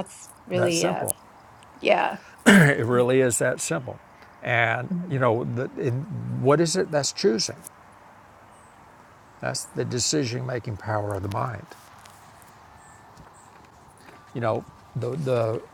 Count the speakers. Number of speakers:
2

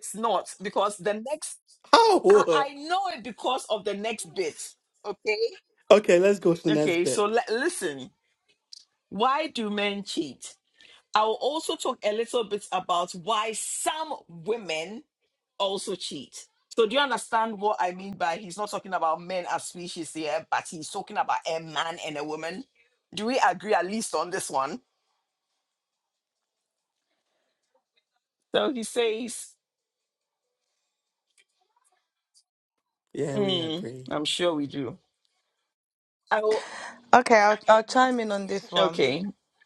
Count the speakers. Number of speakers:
3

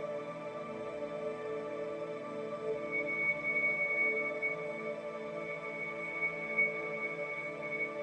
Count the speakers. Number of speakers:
0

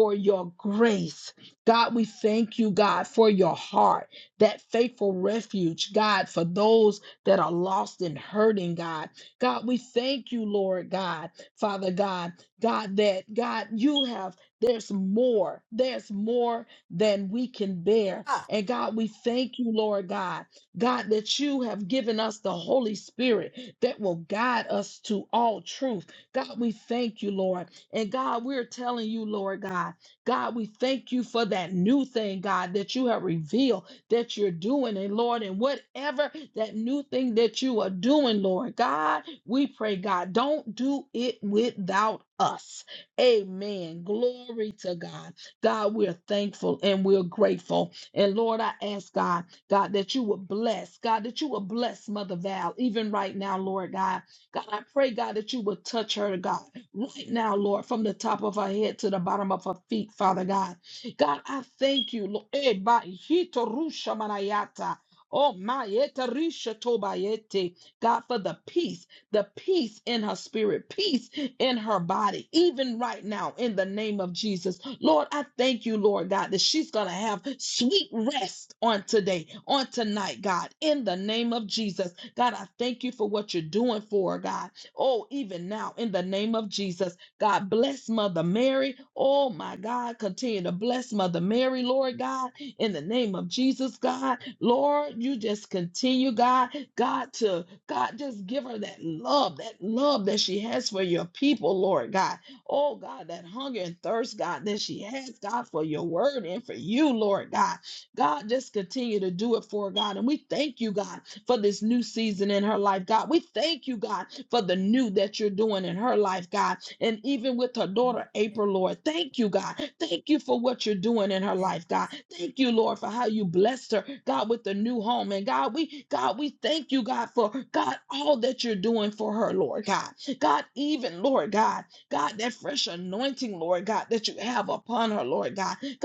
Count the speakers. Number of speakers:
1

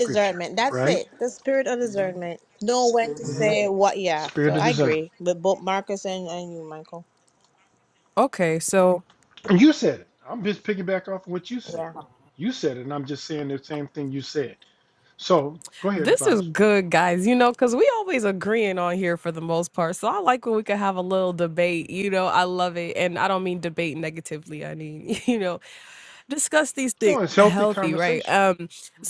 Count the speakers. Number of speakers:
3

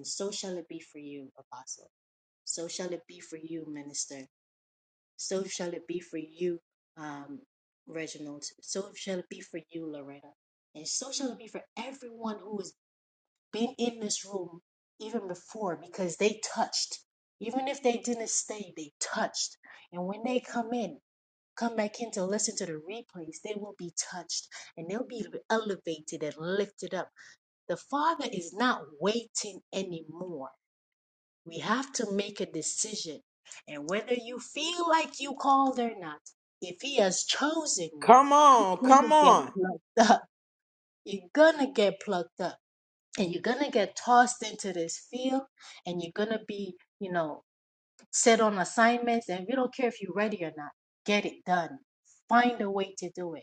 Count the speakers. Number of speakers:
2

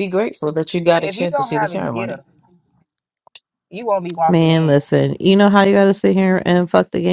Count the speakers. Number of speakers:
3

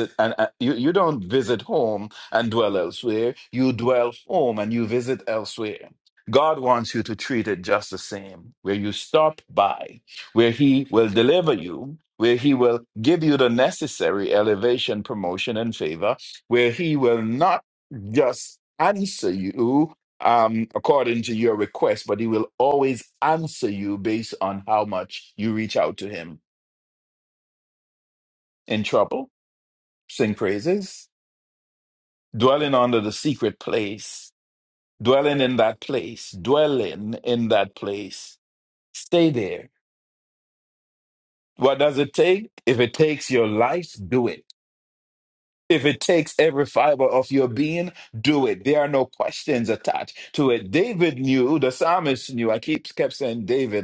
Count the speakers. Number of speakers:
1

